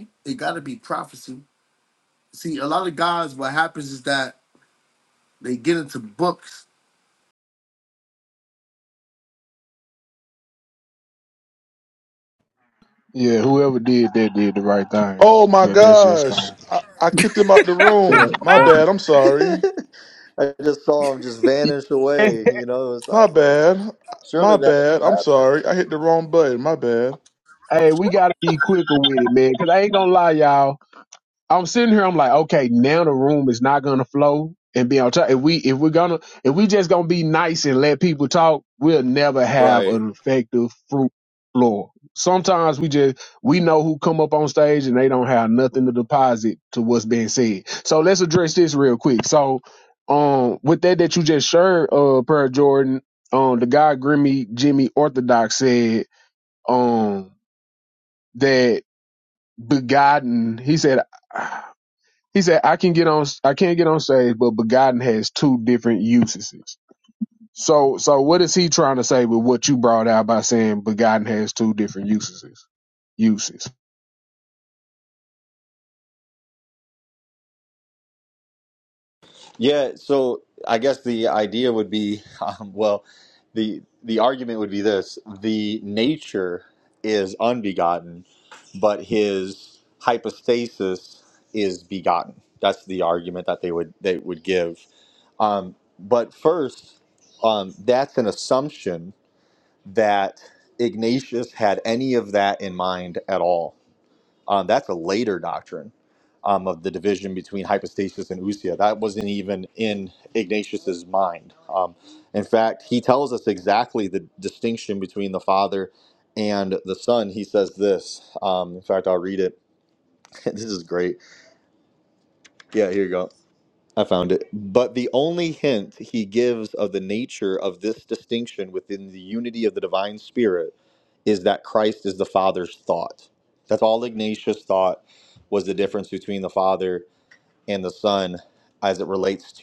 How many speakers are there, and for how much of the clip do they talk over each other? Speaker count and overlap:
four, about 3%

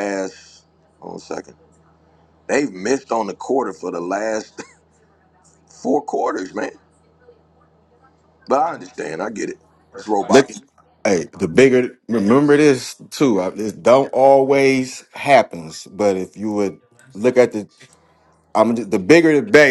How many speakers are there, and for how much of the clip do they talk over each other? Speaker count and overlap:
two, about 2%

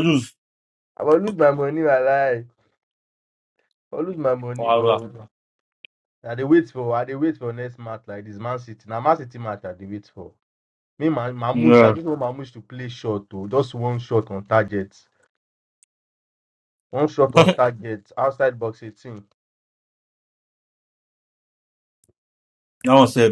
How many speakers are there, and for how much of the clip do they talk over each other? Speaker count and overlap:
two, about 4%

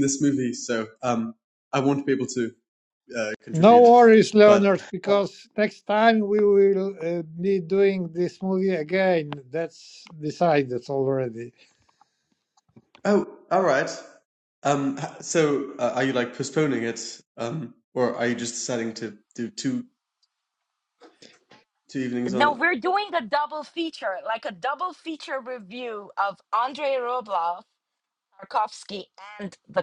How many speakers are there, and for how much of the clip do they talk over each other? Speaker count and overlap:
three, about 4%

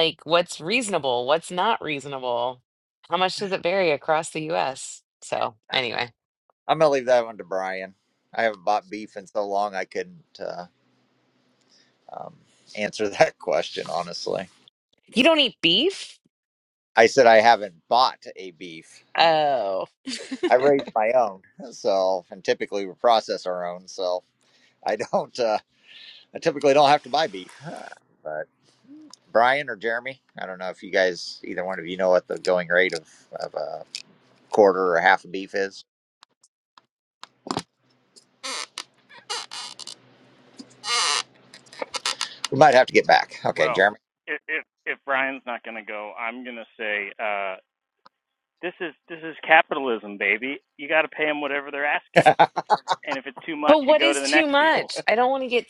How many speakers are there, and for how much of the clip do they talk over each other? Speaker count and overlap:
three, about 3%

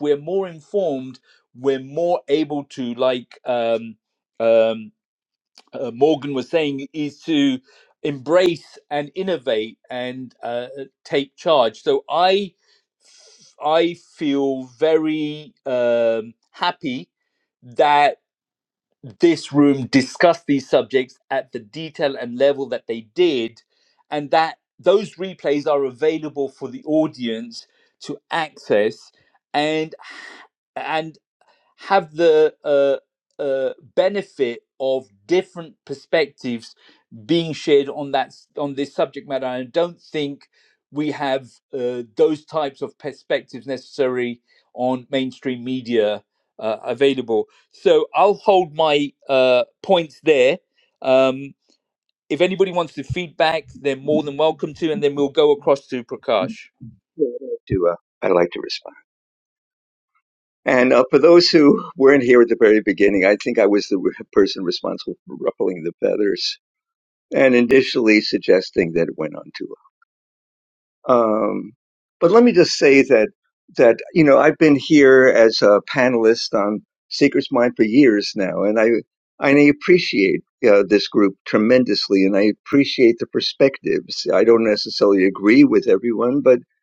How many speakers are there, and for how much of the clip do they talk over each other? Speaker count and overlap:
two, no overlap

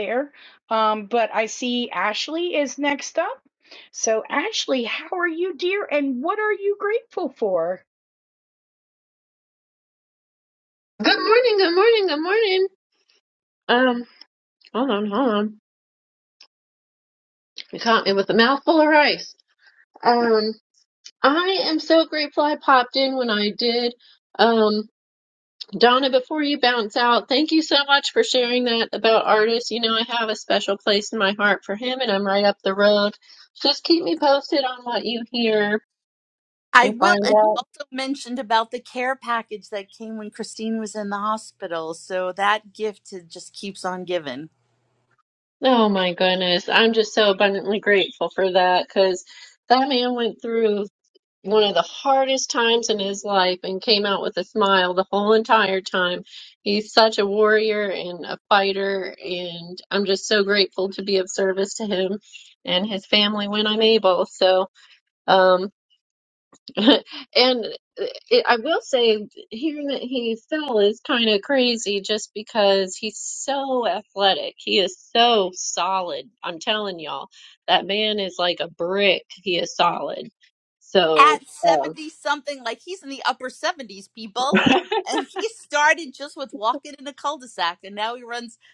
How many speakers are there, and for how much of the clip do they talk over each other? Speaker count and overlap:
three, about 2%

